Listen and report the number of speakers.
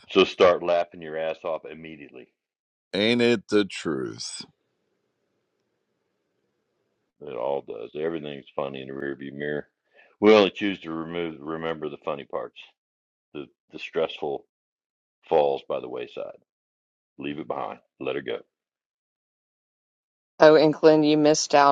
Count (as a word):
three